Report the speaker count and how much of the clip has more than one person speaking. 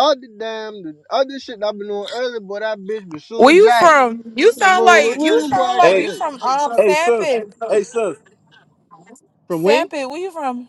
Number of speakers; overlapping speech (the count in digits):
3, about 27%